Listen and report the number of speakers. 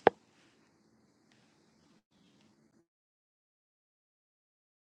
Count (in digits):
0